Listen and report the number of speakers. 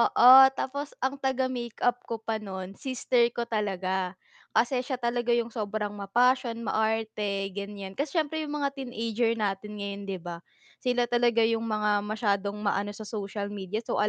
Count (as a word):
one